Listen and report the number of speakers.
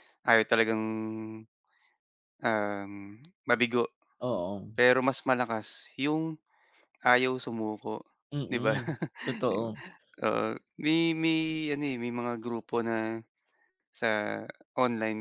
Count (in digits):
2